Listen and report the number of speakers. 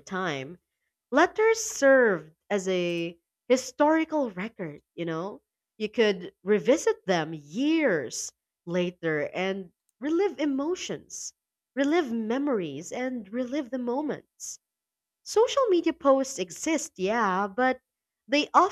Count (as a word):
one